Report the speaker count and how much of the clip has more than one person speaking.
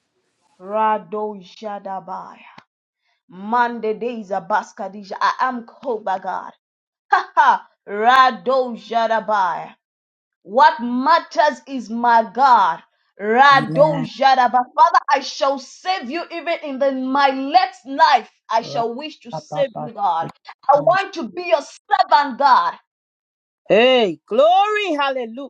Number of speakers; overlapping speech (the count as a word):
two, about 2%